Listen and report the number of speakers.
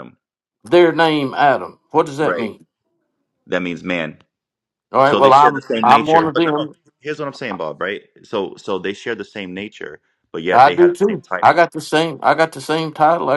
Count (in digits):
2